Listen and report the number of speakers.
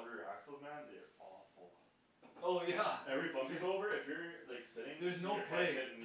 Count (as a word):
two